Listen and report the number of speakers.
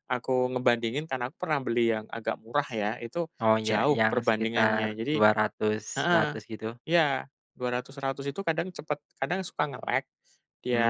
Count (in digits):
2